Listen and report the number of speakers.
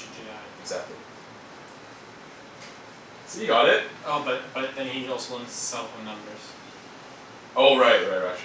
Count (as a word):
two